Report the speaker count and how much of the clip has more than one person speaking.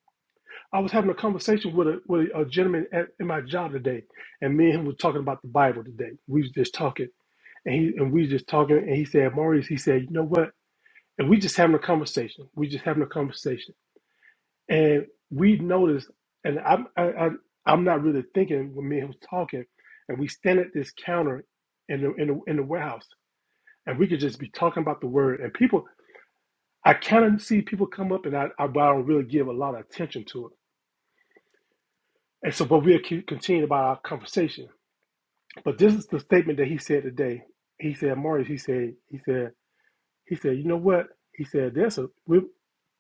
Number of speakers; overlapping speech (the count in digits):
1, no overlap